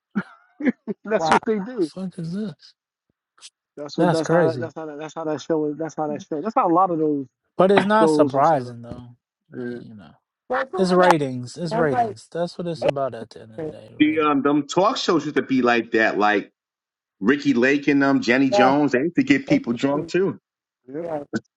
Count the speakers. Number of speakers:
4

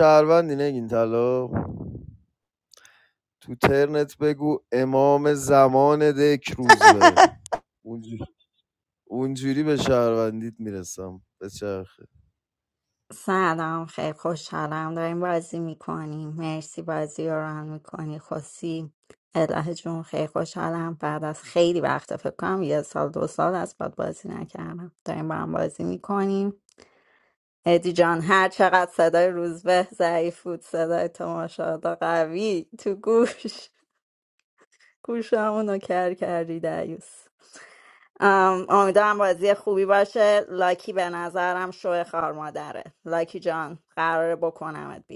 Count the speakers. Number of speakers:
2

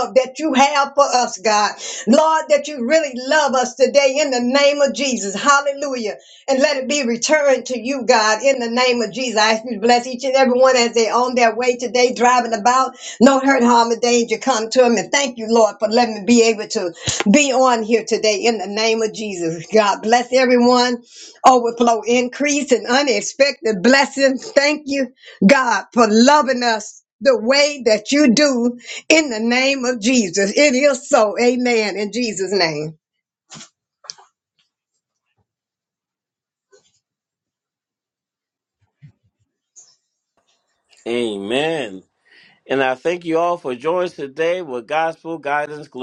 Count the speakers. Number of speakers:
2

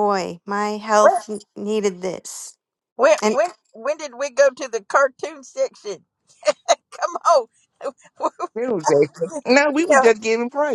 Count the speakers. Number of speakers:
3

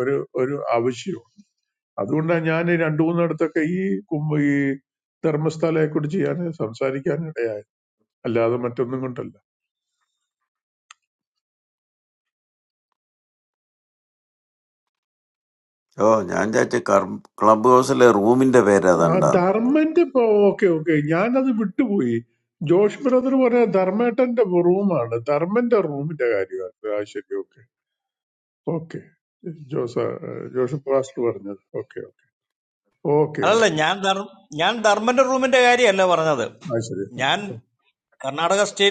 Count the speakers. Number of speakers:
3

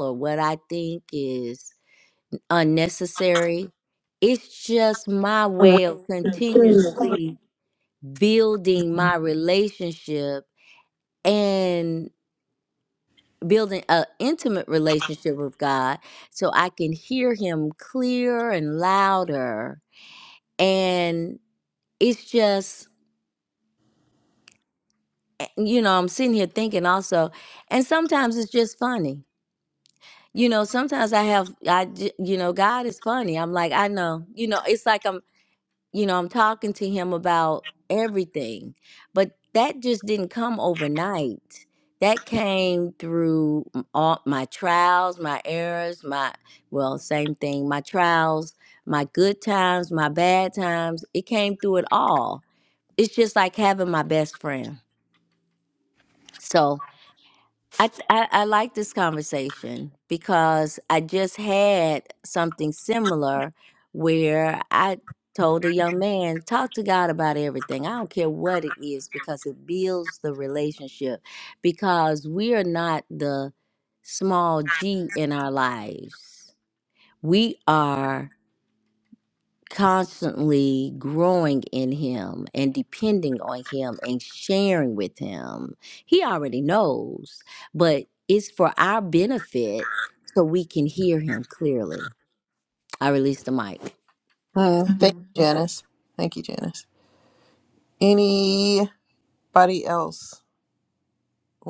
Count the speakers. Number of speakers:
2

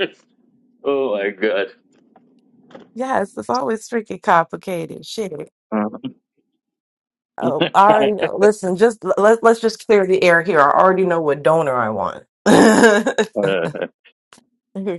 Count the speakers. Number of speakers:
2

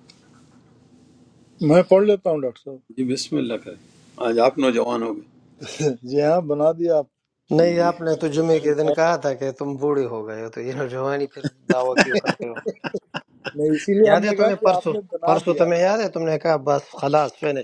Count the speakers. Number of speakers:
3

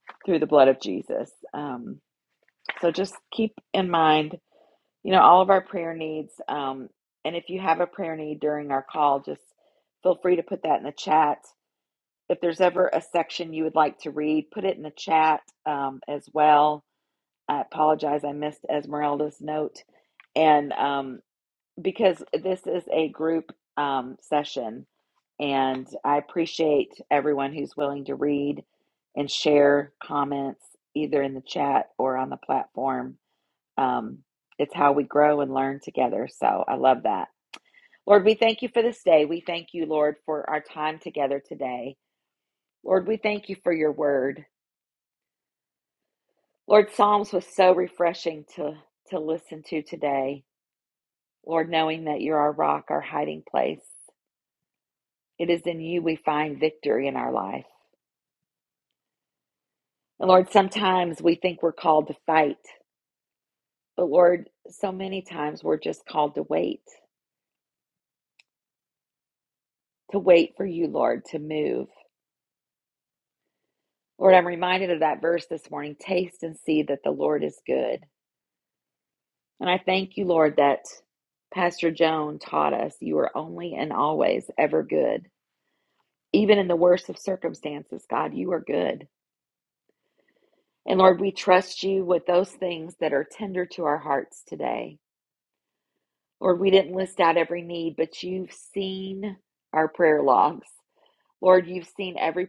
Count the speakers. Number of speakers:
1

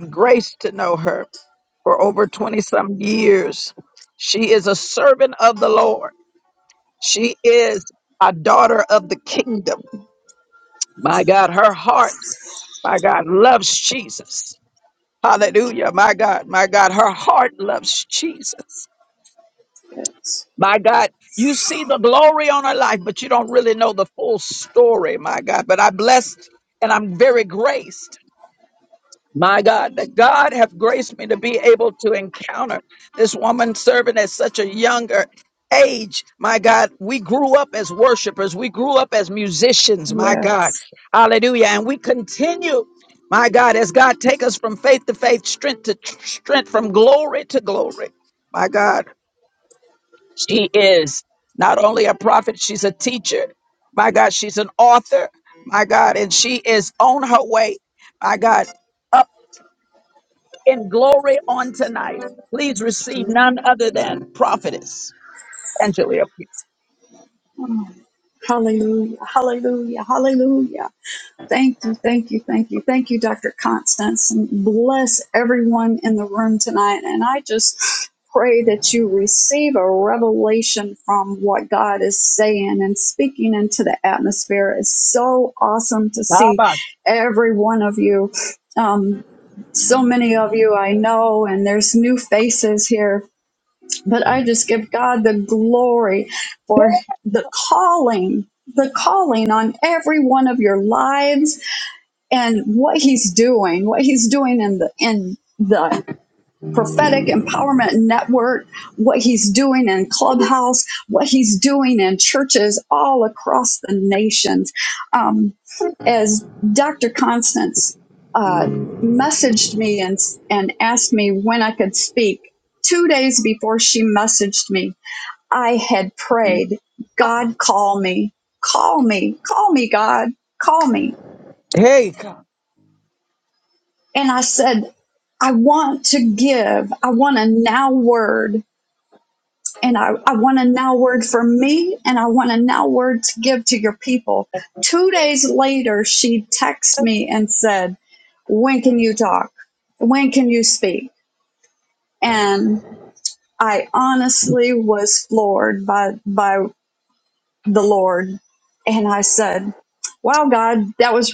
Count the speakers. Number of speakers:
2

